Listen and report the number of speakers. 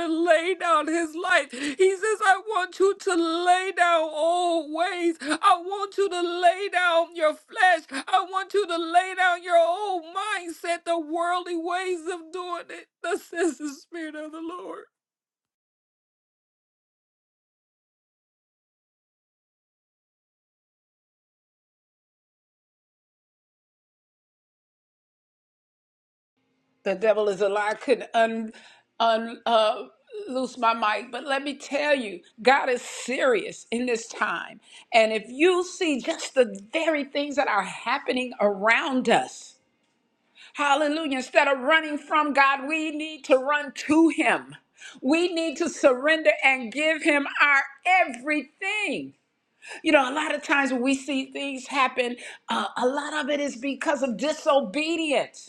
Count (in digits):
2